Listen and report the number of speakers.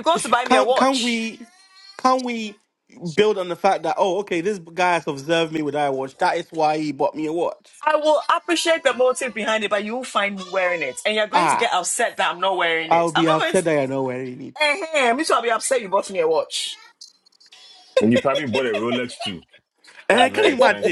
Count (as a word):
three